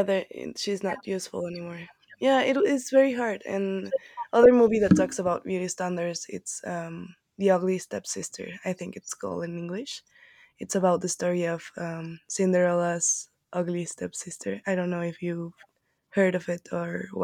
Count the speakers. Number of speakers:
1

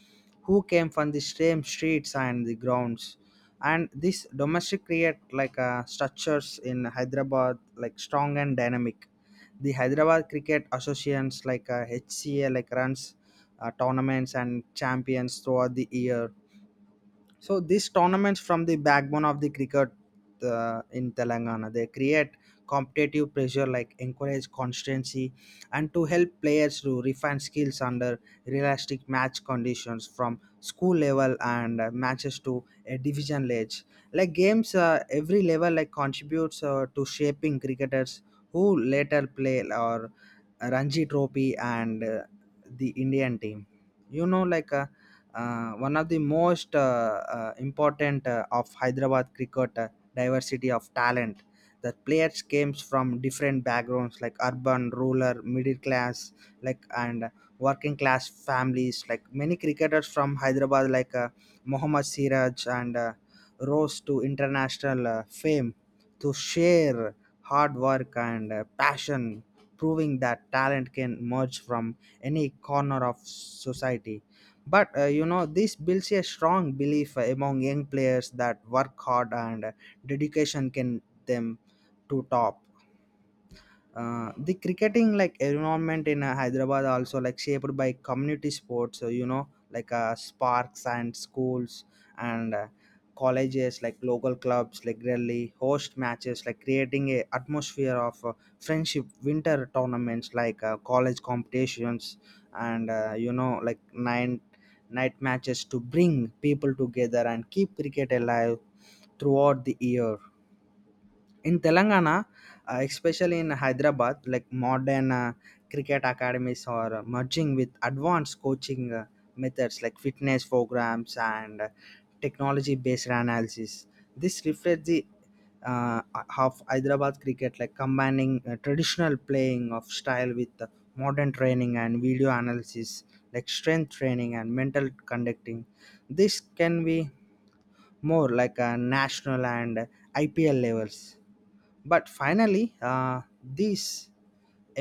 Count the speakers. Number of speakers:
1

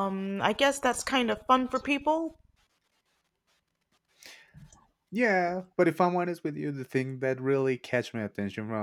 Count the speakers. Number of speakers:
2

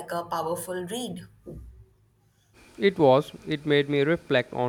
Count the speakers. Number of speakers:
2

